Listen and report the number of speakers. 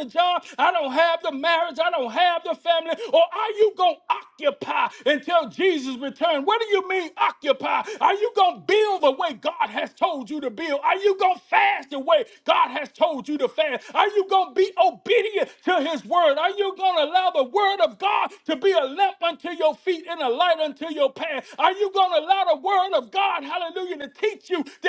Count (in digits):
1